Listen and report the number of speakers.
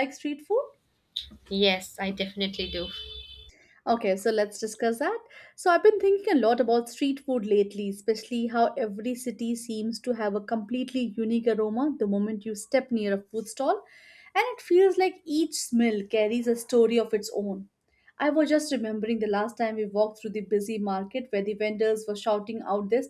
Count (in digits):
2